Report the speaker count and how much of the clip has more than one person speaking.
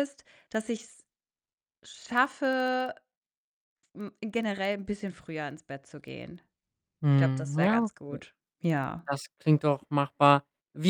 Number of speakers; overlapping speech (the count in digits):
2, about 10%